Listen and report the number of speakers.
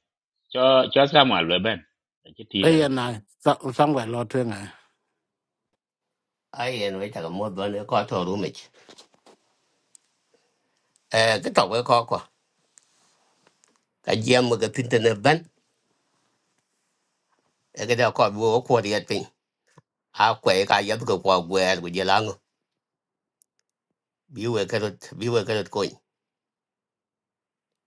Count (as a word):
three